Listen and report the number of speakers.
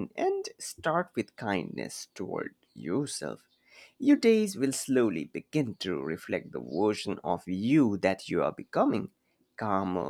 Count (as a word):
one